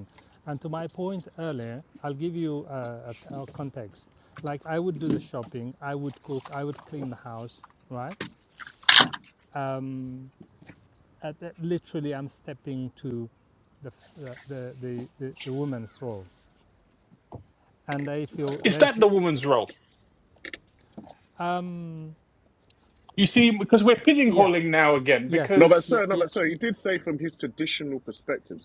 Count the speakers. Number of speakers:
3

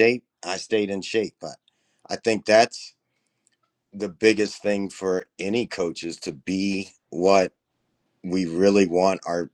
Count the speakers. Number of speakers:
1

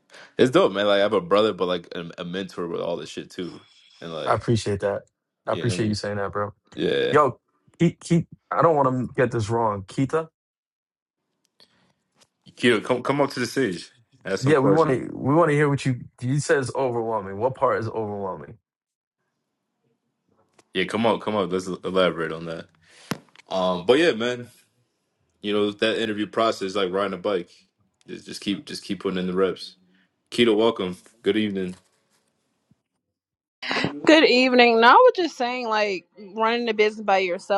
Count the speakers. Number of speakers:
3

